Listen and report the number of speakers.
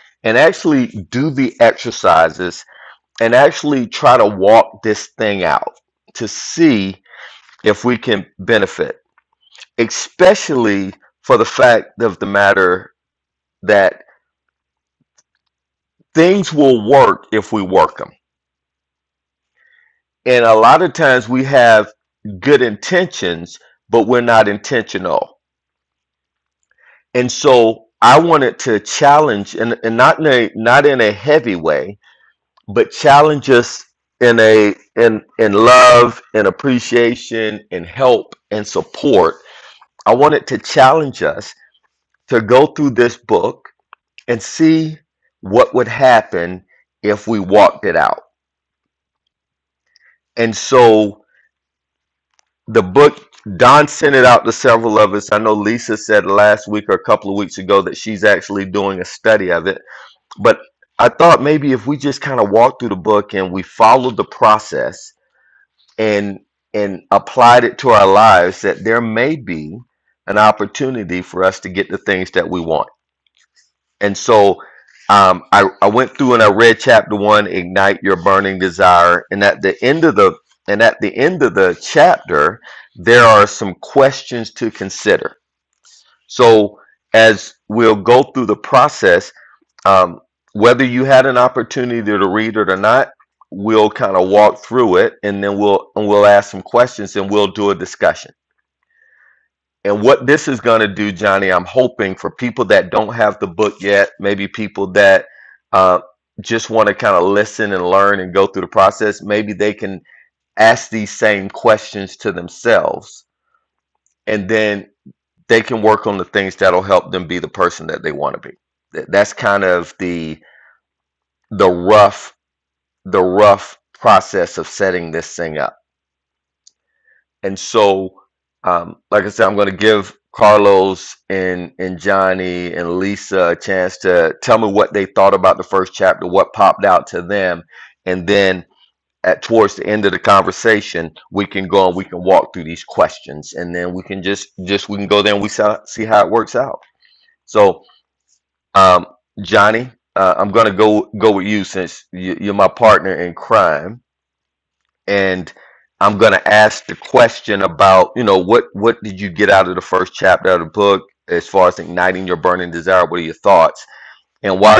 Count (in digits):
1